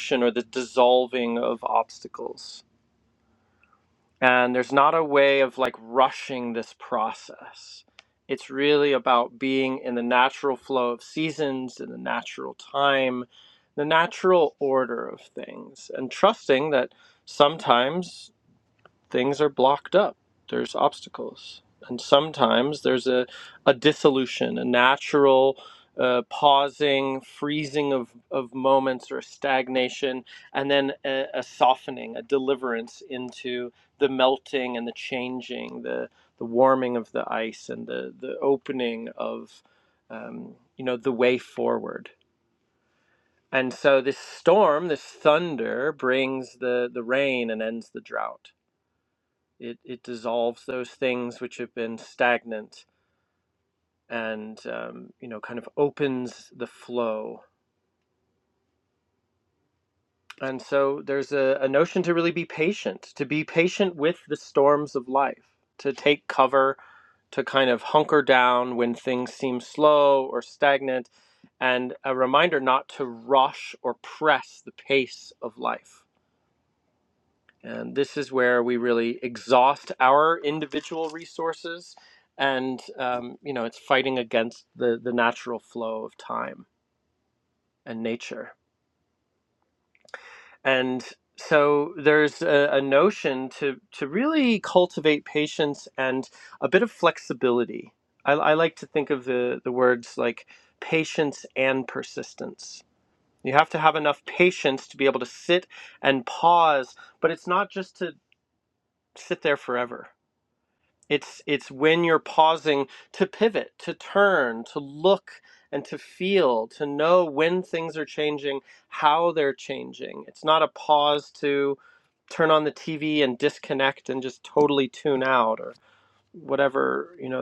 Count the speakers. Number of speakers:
one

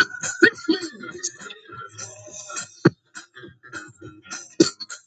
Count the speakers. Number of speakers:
zero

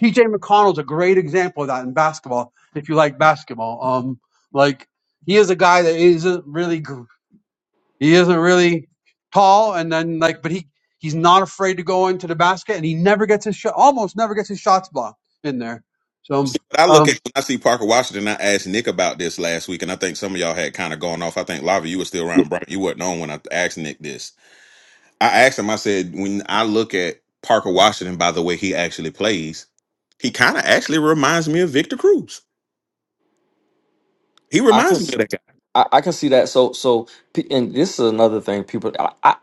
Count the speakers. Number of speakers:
three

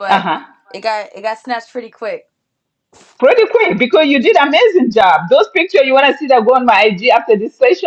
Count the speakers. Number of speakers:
two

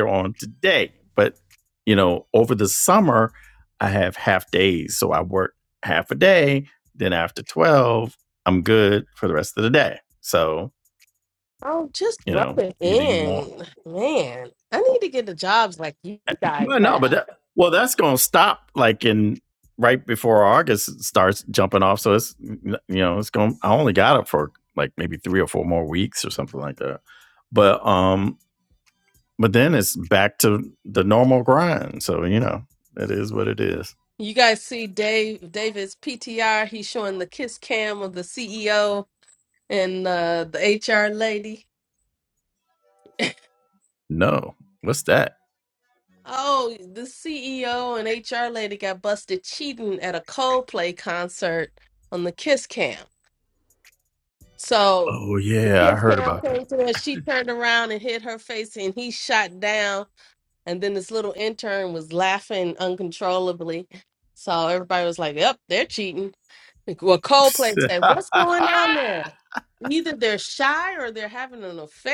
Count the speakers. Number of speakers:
two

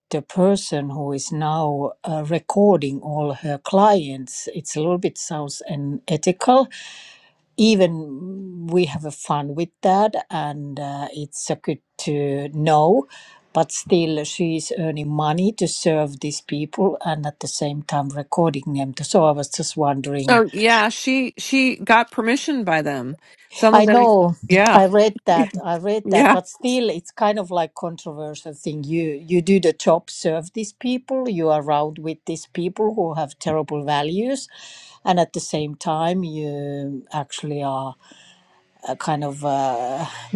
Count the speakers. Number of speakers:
two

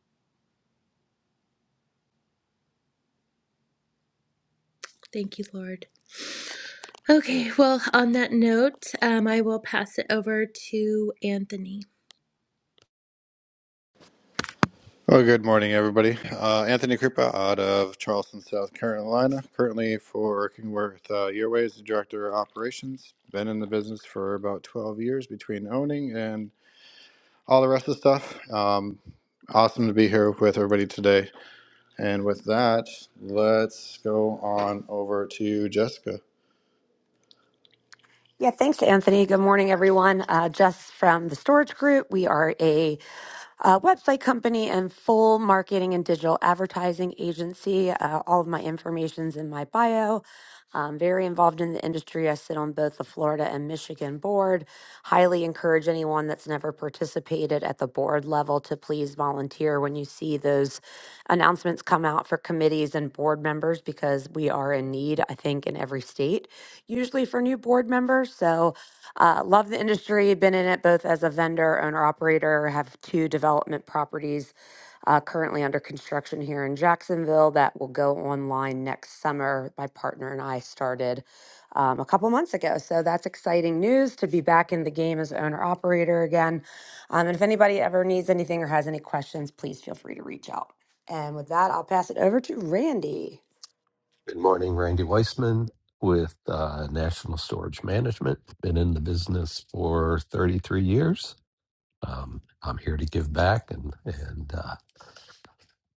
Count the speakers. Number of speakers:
four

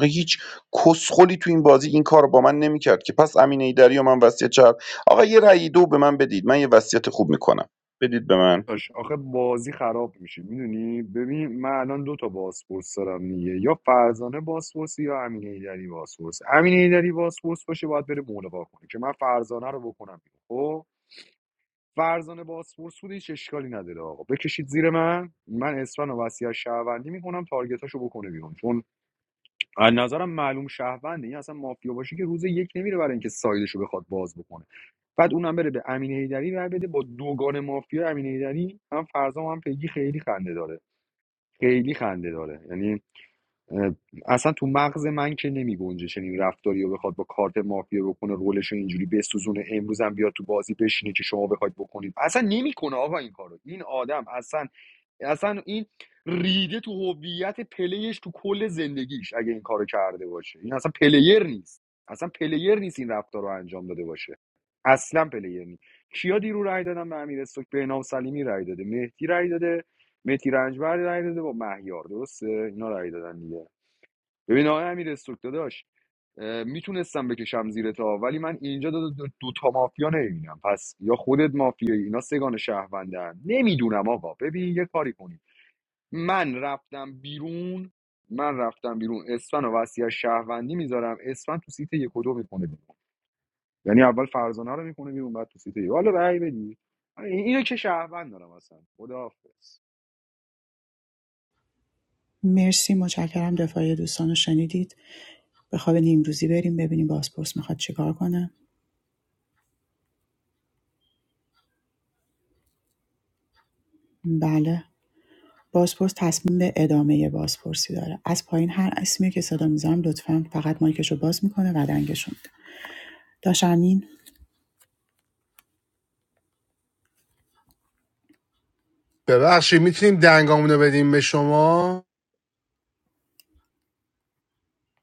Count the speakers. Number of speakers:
four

